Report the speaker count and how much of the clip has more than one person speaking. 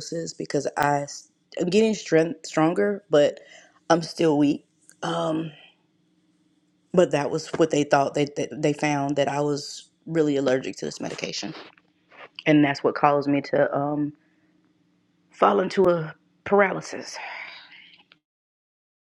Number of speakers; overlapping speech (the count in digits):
1, no overlap